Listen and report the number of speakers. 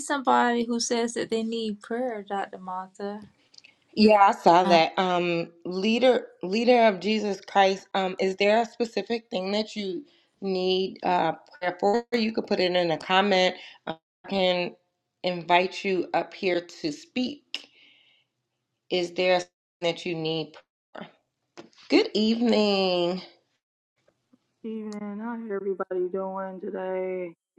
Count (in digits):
3